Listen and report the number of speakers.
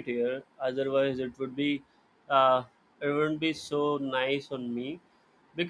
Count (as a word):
one